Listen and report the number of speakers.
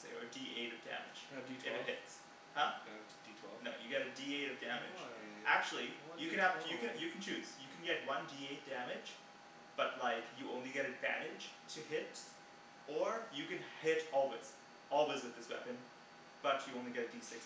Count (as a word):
two